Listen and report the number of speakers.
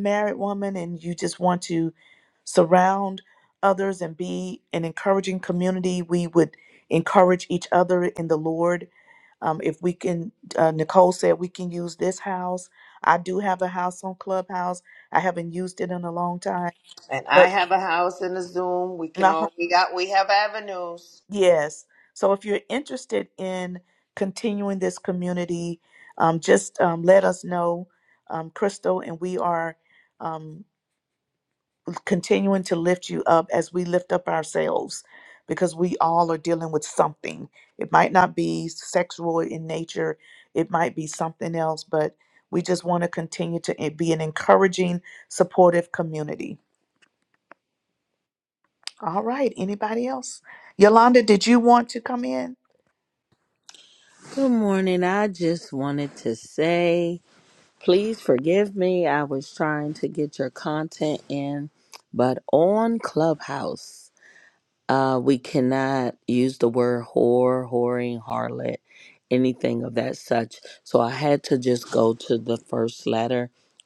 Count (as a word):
three